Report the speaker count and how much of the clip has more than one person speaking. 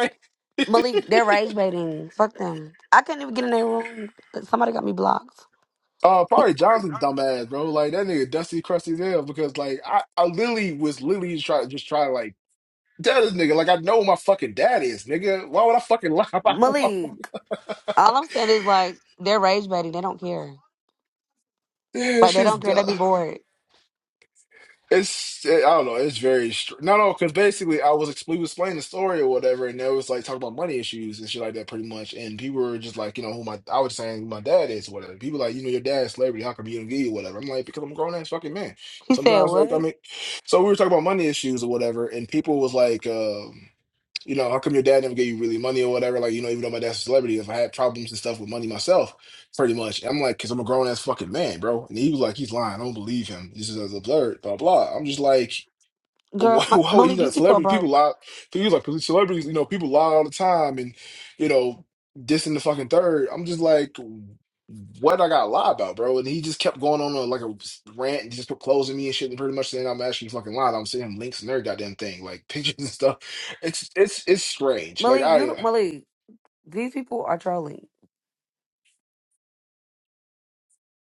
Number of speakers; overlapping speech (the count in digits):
2, about 5%